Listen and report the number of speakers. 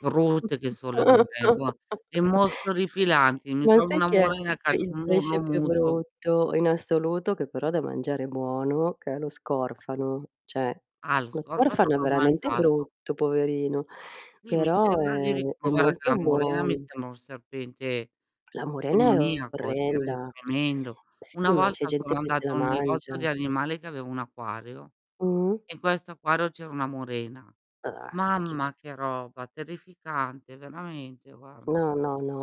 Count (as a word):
two